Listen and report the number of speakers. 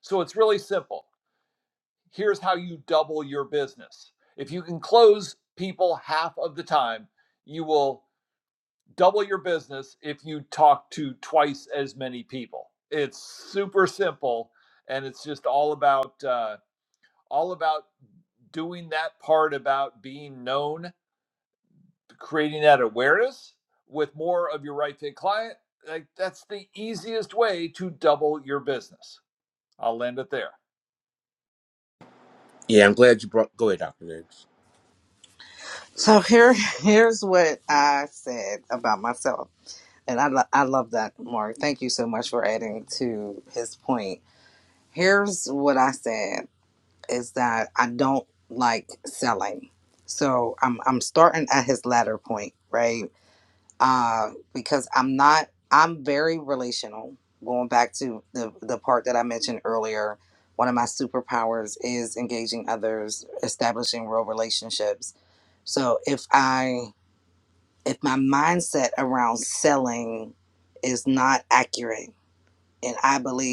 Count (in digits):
3